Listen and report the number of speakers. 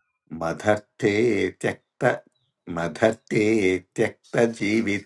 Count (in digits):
1